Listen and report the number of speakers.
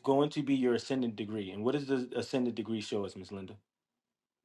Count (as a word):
one